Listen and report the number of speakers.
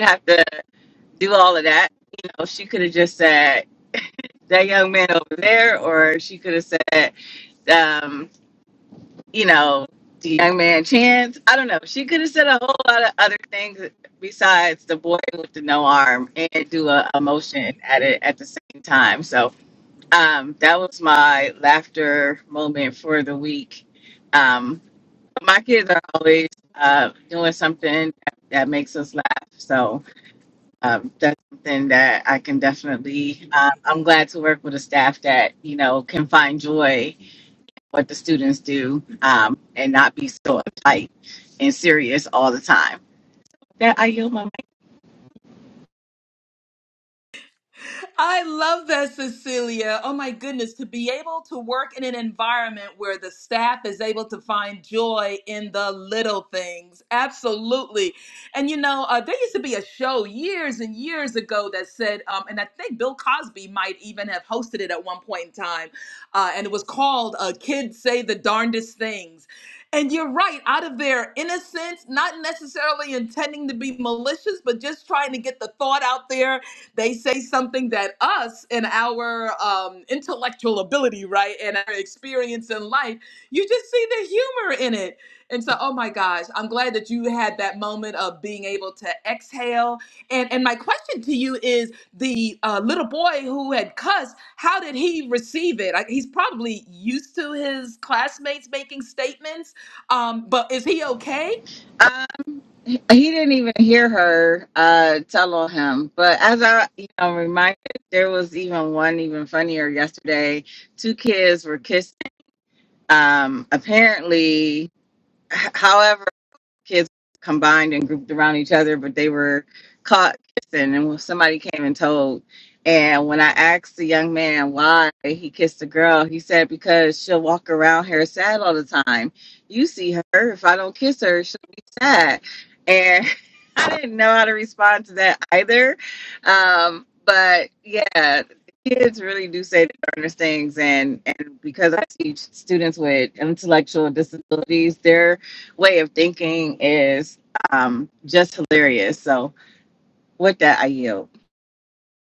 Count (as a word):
two